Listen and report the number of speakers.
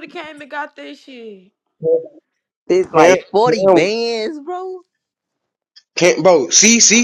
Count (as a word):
three